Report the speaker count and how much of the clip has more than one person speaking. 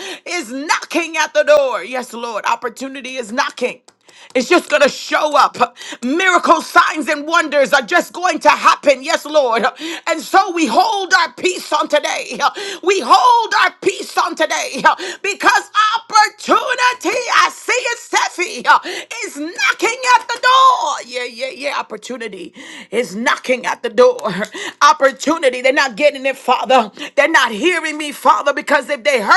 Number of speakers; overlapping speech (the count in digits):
1, no overlap